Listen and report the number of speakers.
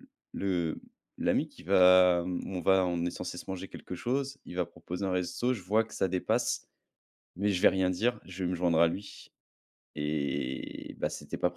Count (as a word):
one